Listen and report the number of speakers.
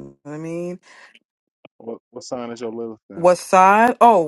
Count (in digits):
2